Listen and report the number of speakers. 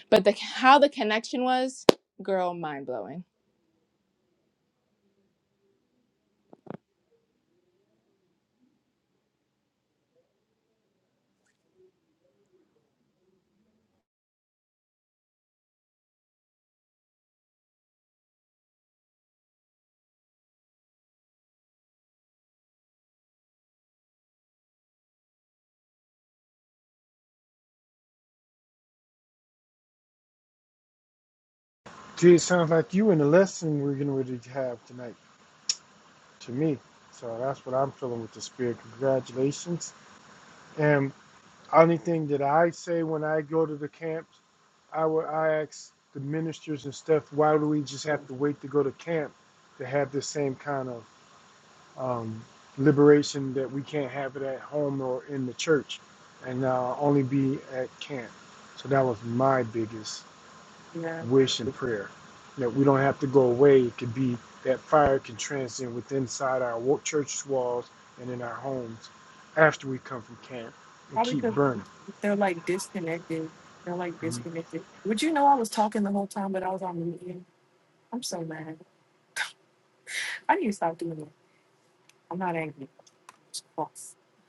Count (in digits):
3